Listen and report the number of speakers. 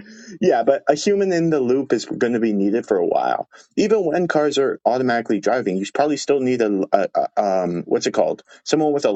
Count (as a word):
one